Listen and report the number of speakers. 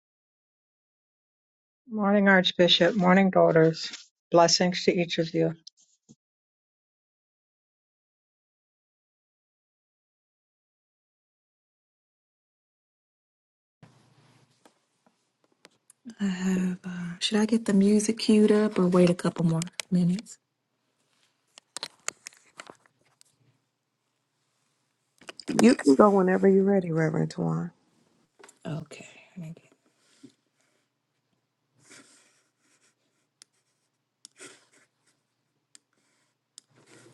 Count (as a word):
three